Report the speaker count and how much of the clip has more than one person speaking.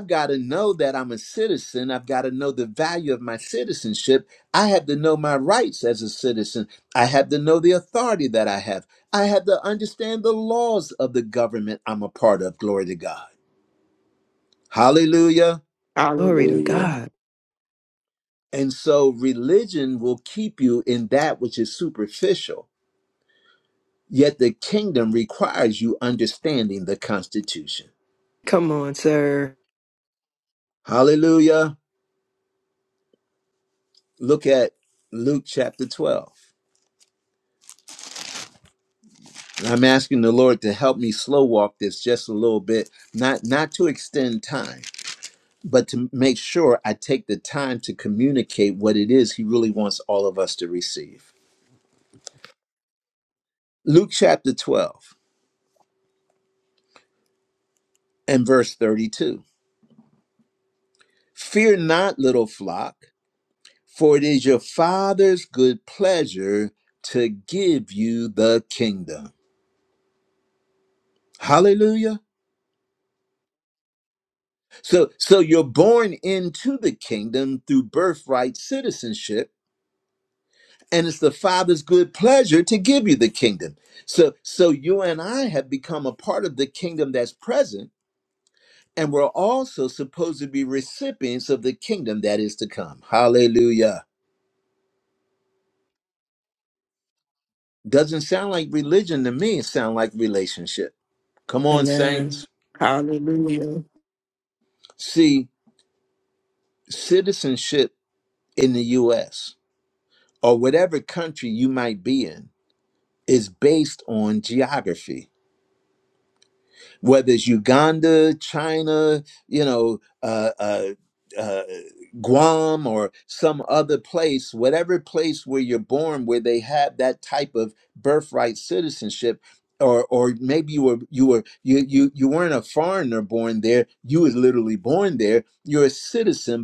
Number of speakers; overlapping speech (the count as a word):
three, about 1%